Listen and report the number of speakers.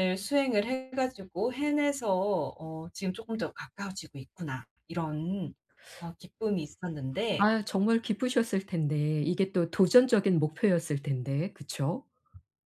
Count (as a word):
two